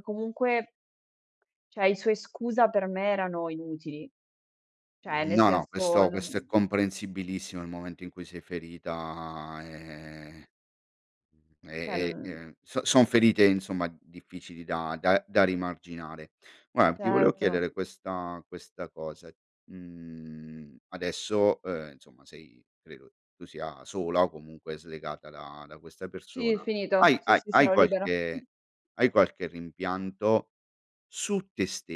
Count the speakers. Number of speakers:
2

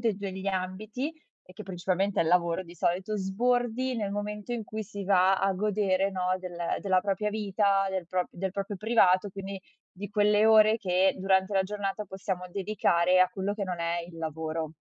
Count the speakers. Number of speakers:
1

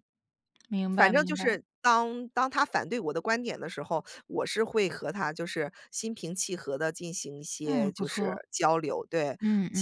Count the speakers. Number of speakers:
2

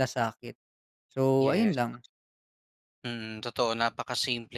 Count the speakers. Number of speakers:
2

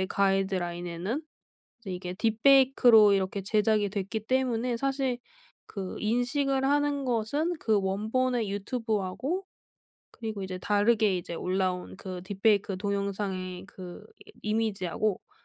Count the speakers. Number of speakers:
1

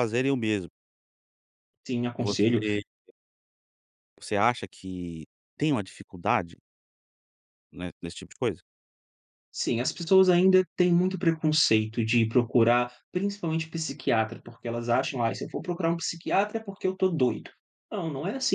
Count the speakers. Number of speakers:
2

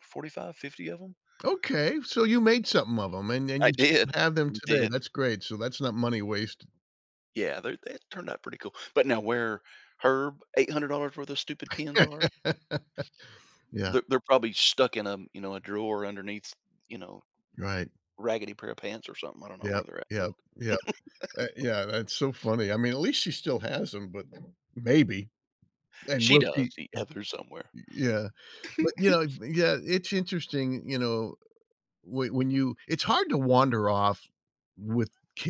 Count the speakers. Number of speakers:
2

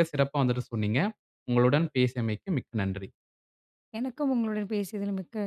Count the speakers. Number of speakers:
2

